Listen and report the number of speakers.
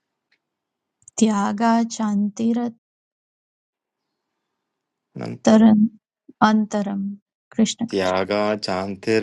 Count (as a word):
two